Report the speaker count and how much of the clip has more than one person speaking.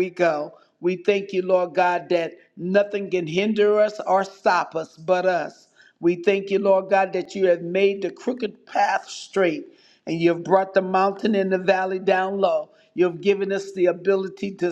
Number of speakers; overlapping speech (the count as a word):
one, no overlap